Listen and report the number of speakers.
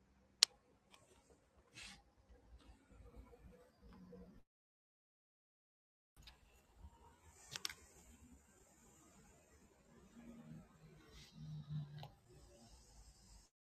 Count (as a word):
zero